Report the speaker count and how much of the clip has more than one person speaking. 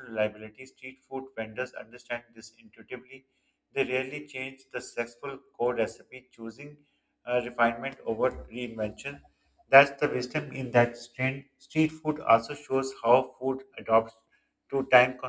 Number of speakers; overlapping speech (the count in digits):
1, no overlap